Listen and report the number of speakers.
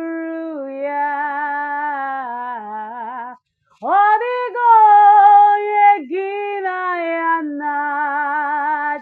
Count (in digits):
1